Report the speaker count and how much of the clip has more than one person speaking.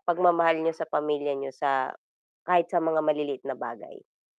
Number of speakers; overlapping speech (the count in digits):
1, no overlap